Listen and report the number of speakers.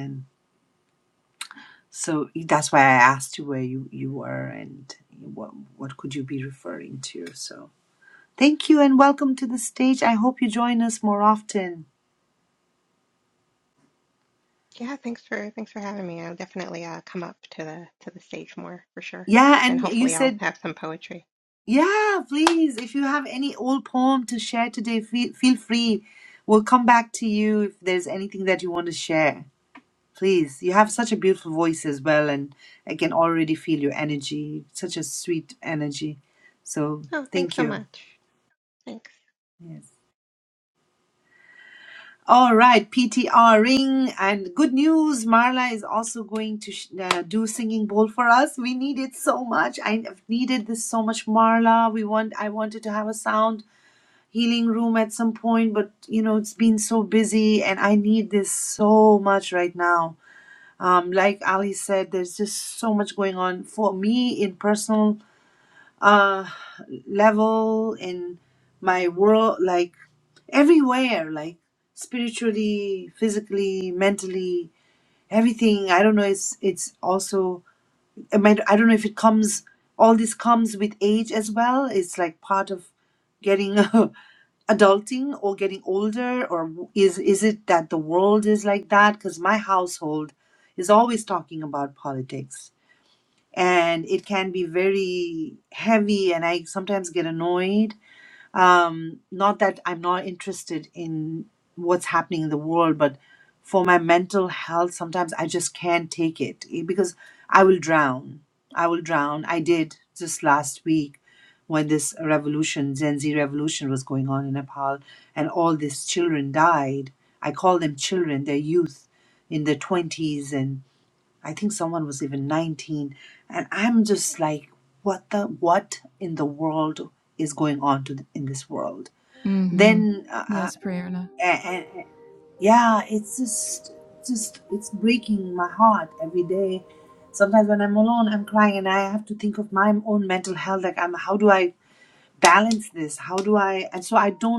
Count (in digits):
3